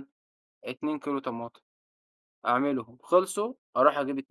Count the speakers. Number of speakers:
1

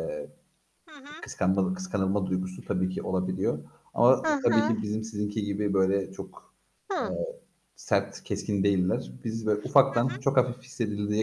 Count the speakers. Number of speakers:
2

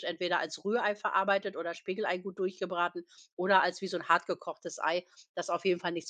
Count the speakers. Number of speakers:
1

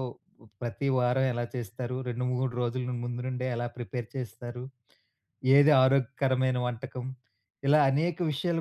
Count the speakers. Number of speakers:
1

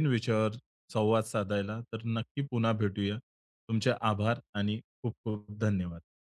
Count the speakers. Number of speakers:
1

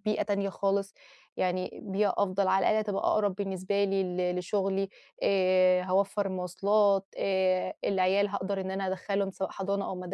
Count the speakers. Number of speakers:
1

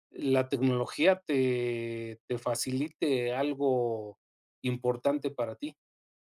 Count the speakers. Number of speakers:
1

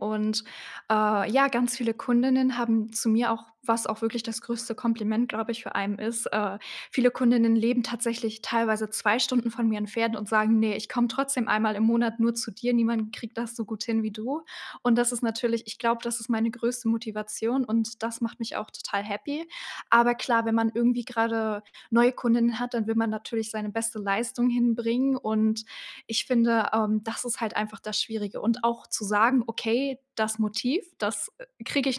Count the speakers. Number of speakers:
1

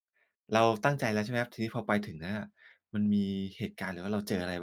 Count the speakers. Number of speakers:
1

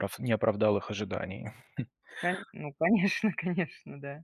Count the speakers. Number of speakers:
2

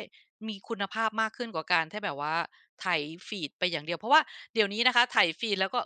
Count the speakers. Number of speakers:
1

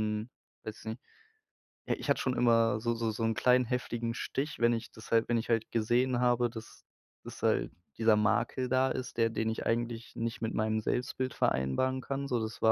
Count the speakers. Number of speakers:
1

